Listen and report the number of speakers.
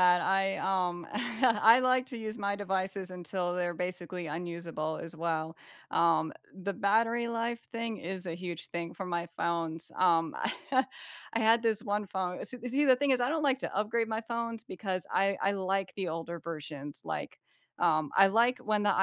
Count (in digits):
1